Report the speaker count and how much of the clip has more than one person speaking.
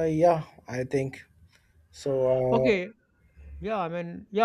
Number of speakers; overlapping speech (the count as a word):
two, about 4%